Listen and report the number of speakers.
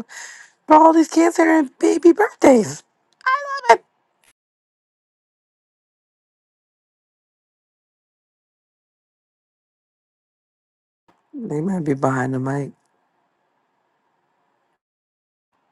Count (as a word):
one